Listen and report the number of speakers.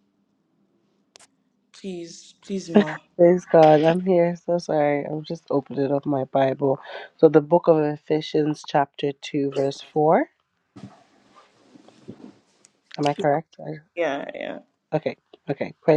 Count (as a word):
two